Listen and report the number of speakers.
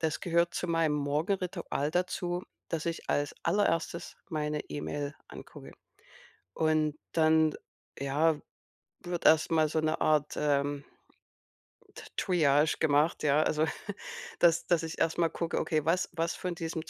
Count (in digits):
1